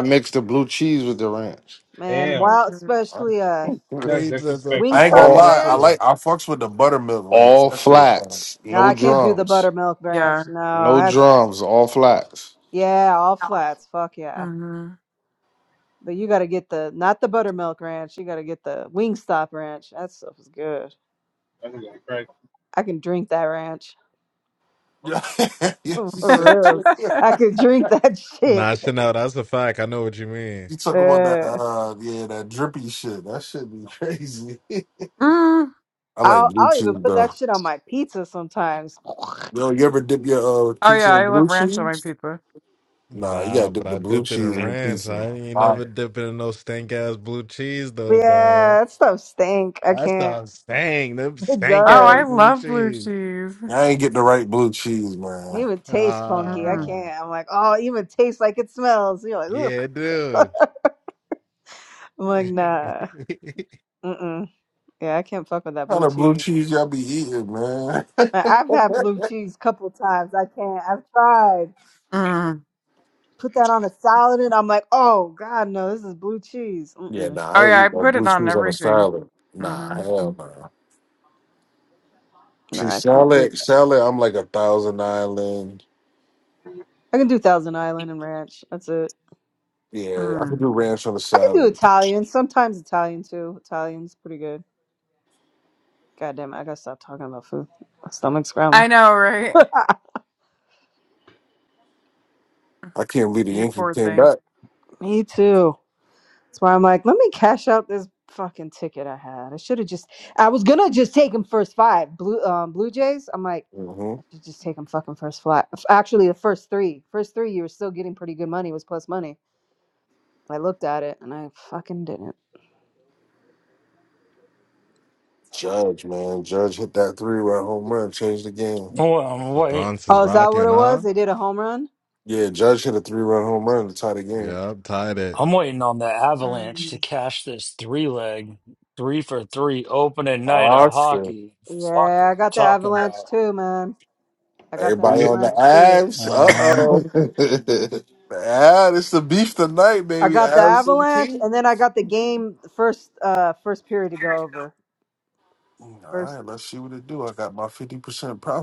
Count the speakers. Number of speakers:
7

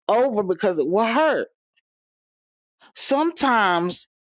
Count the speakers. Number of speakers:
1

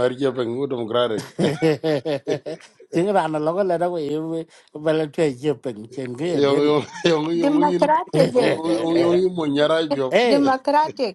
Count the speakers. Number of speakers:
3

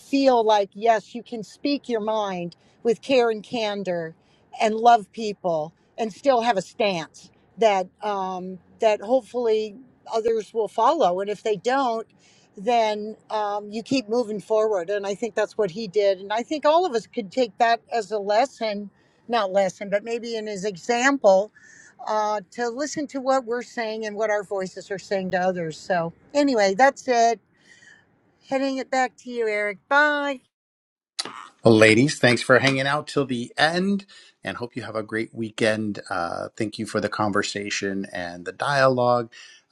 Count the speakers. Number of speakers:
2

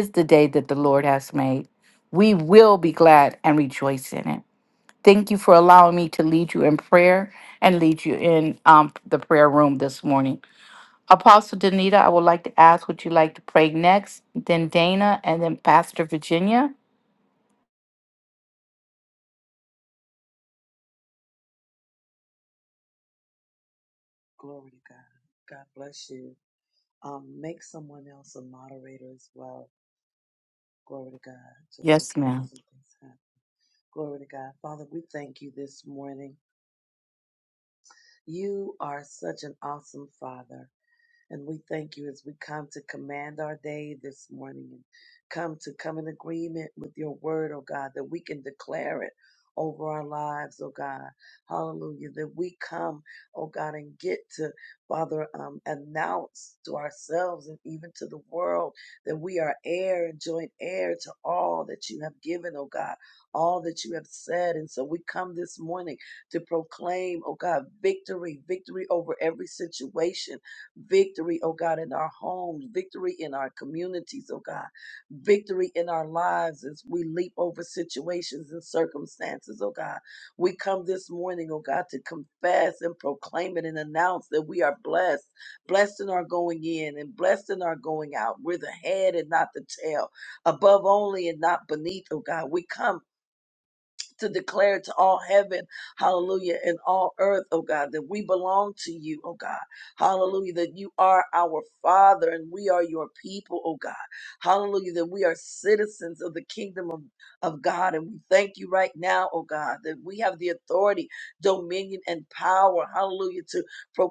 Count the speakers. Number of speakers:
2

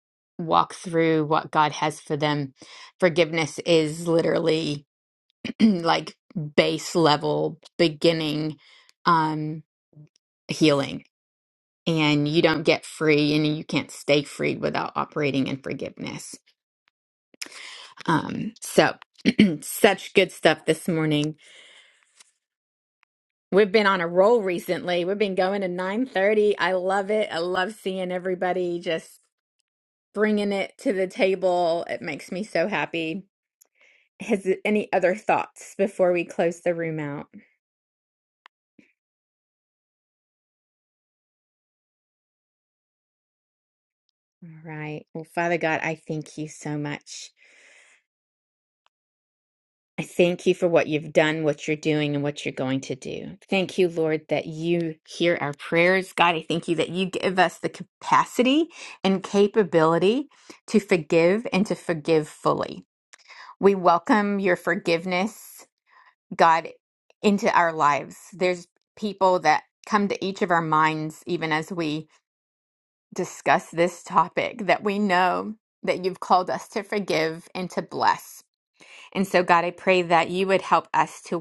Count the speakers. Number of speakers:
1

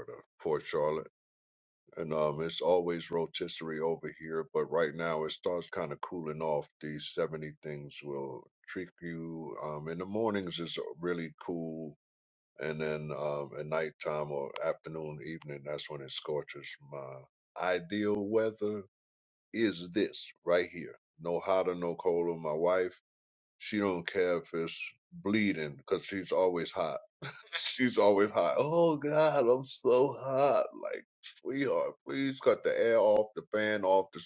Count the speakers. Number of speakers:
1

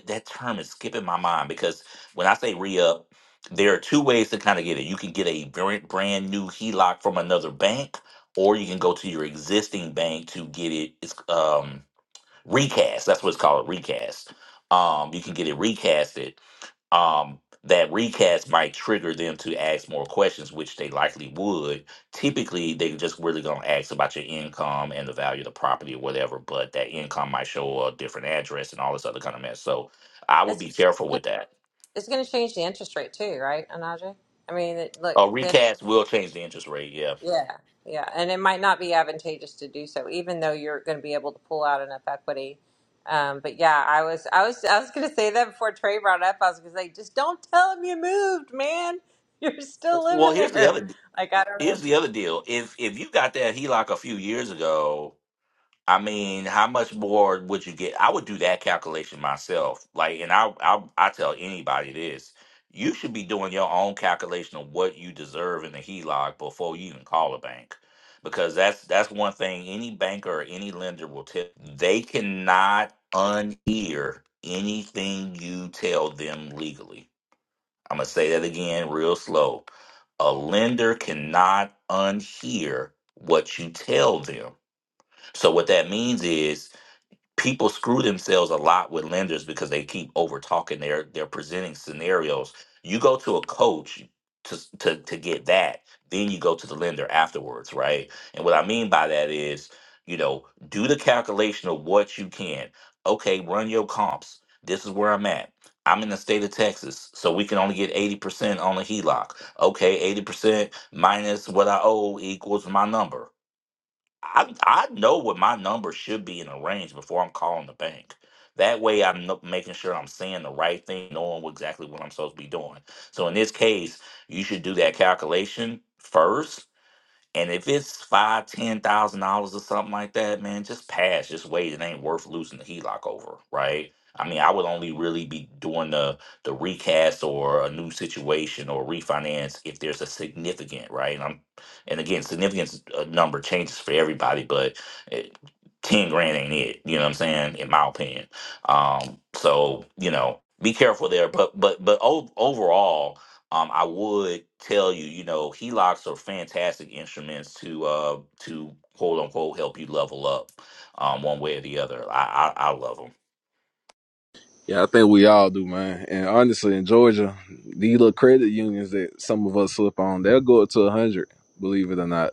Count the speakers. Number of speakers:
3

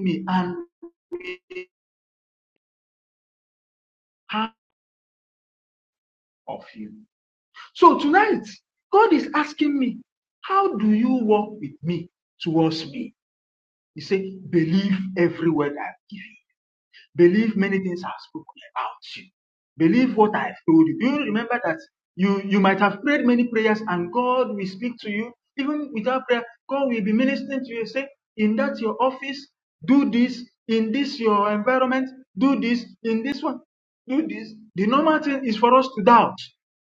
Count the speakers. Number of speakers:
1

